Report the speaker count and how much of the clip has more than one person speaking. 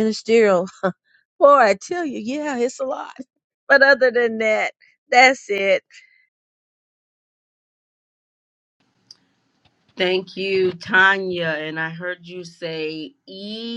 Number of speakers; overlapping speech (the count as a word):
two, no overlap